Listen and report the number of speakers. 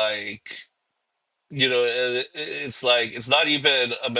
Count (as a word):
one